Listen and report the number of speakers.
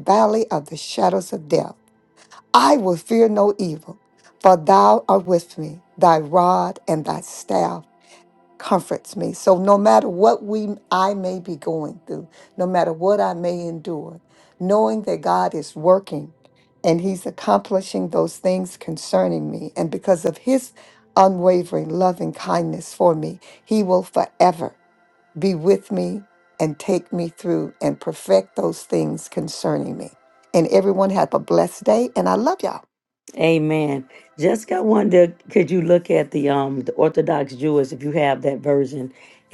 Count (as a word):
two